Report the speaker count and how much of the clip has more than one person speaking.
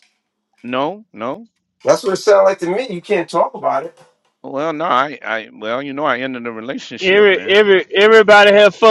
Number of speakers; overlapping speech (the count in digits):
3, about 6%